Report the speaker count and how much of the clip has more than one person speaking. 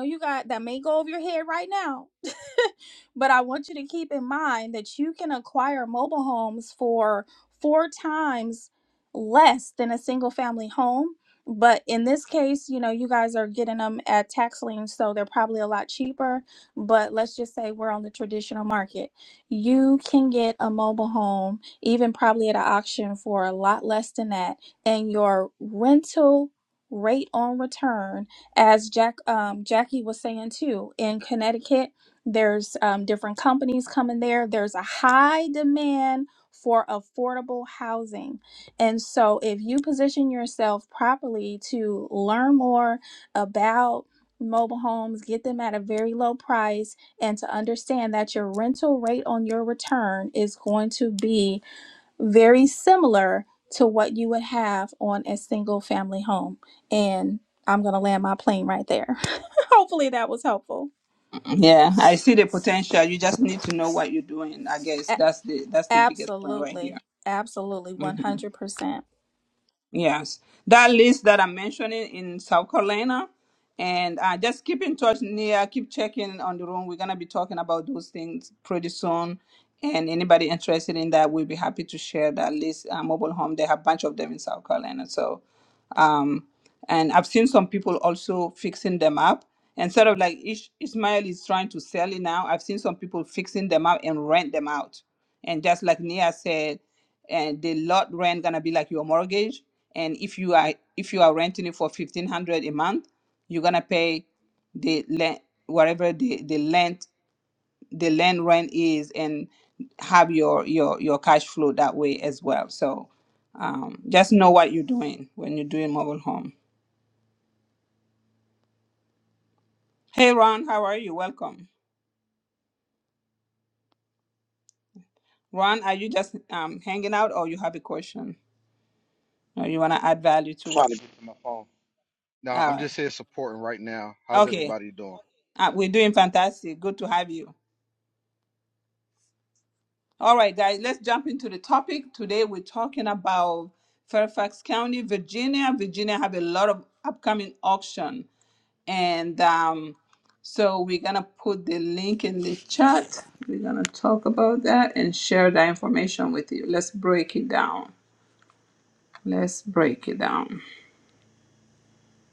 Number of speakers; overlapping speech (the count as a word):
three, about 1%